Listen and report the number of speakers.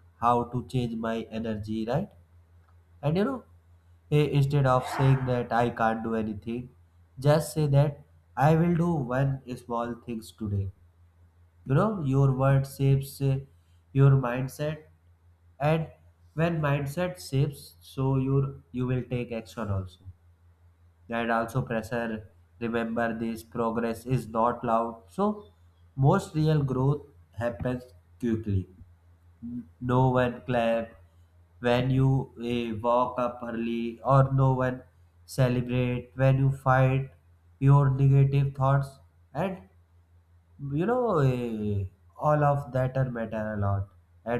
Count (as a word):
one